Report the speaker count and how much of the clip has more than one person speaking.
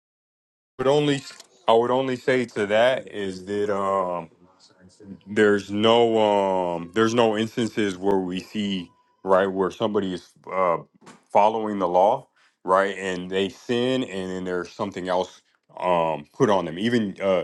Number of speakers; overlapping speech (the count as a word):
one, no overlap